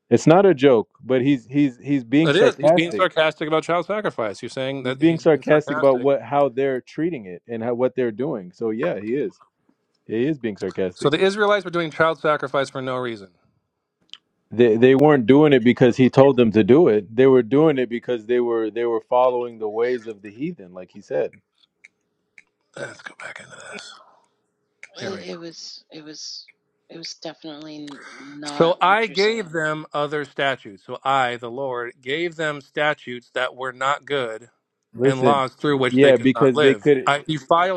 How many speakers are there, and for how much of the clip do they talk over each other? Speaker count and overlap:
3, about 13%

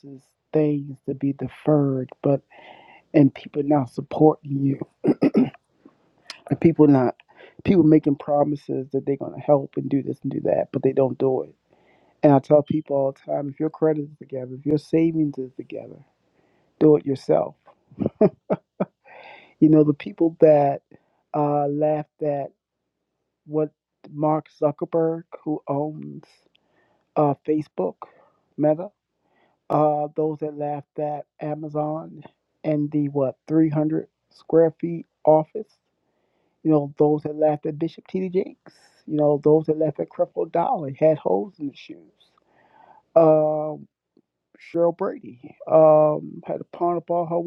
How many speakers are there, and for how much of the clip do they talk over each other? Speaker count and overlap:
1, no overlap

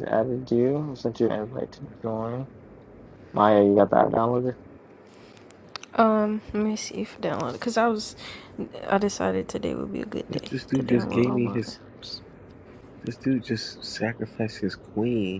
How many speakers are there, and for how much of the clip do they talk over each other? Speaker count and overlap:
3, about 9%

